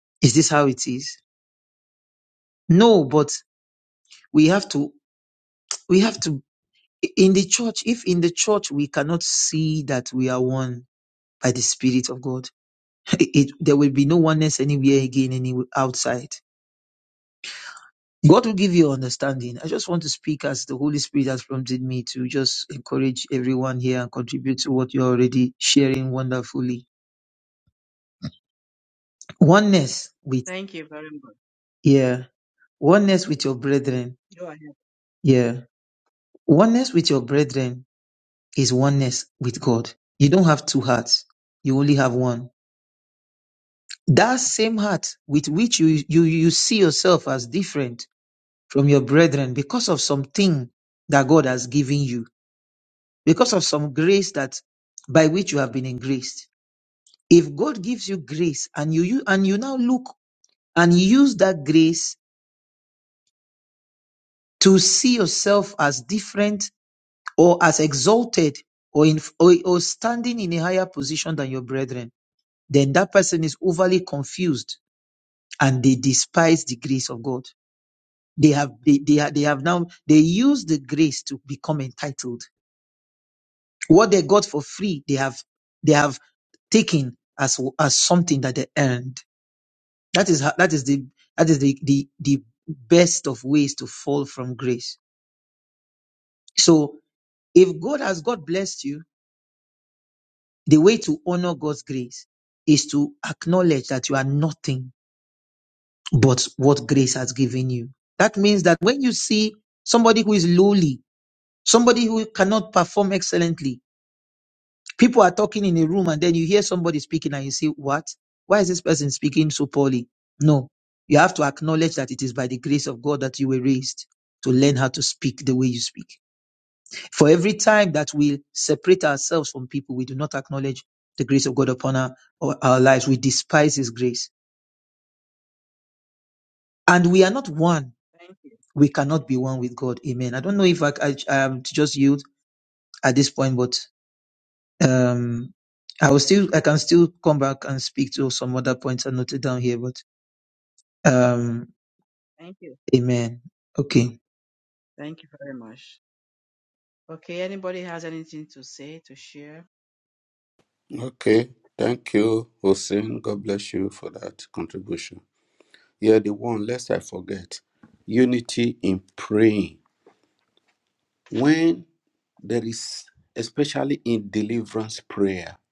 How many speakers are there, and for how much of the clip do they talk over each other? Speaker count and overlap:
3, no overlap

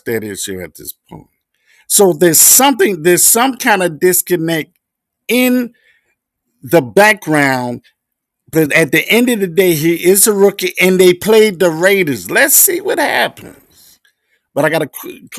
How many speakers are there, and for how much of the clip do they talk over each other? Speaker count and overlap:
1, no overlap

